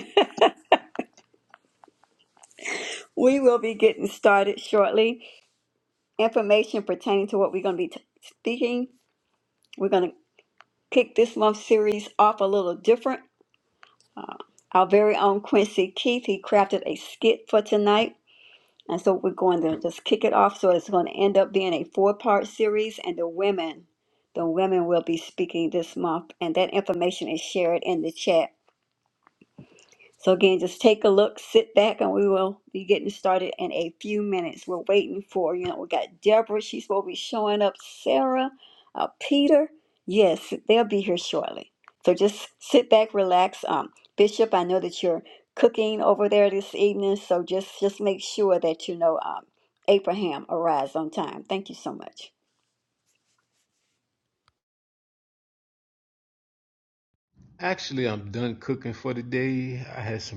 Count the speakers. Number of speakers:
2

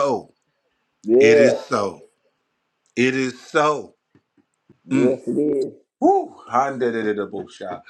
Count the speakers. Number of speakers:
2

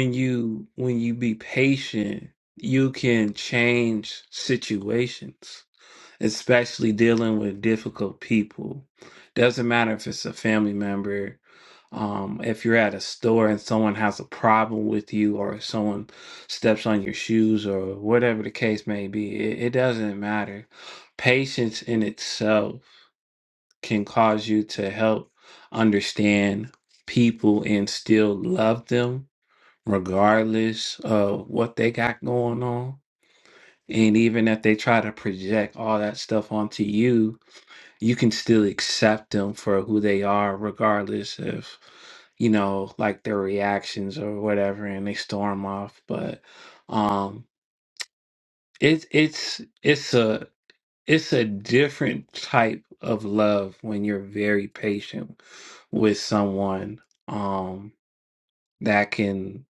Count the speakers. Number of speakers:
1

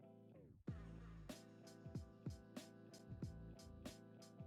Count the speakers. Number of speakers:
0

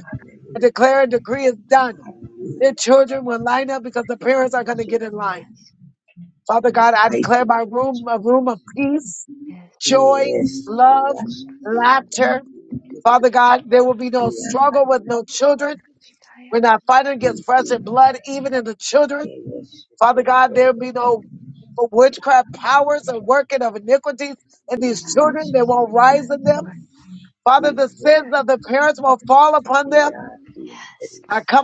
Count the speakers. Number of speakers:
3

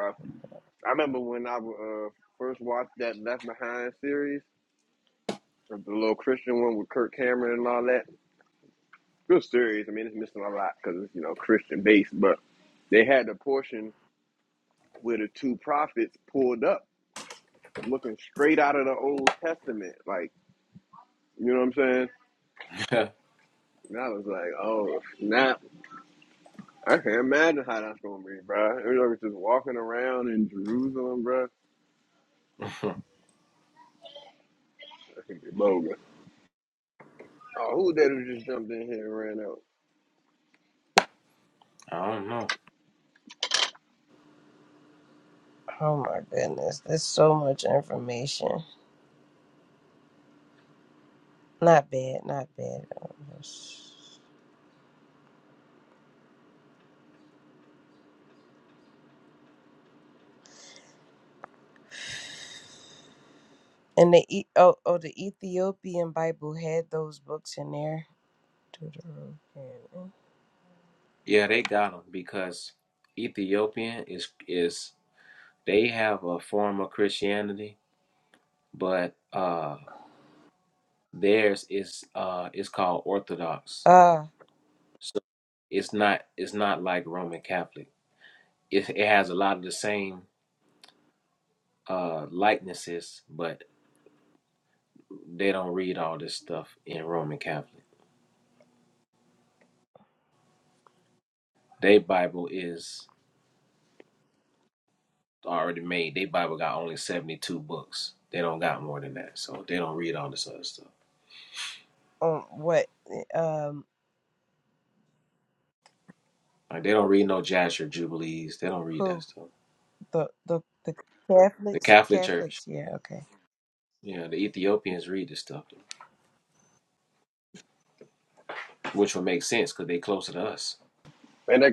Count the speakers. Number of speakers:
3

